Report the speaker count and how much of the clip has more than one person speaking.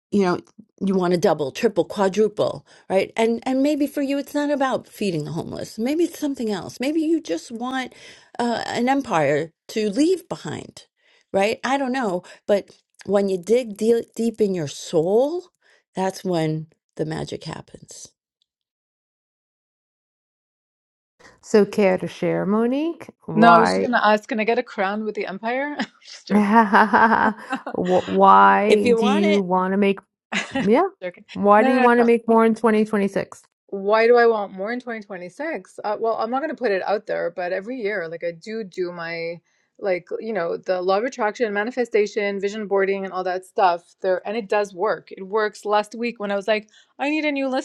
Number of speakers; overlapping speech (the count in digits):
3, about 4%